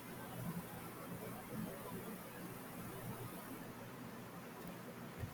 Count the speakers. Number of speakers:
0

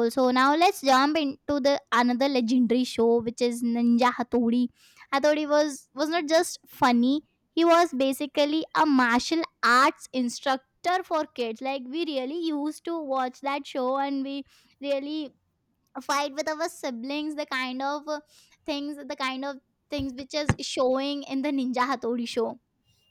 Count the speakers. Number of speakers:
1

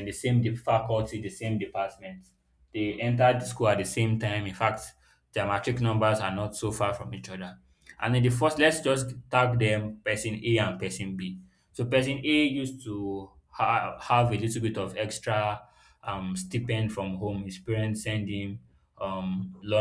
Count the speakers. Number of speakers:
1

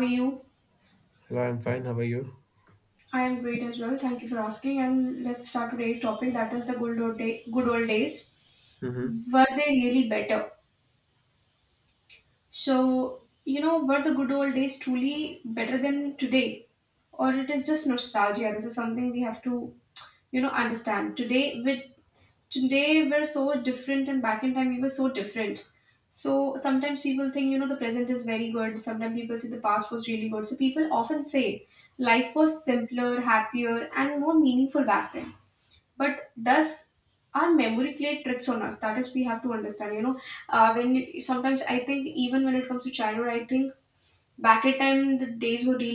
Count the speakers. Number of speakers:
2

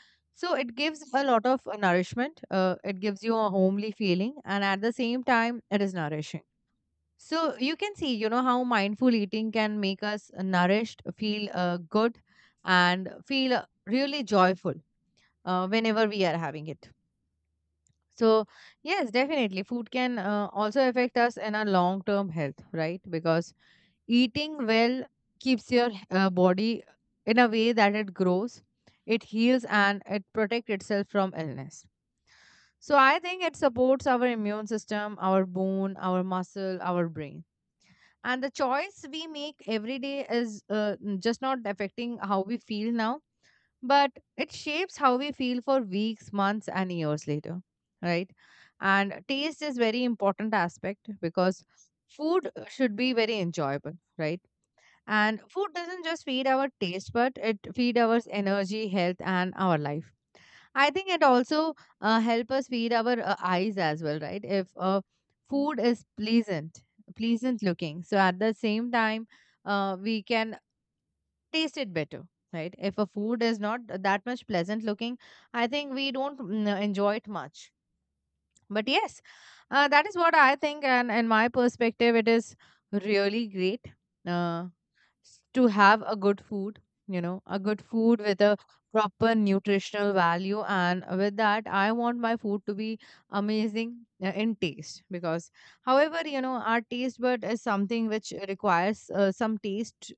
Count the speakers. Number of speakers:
1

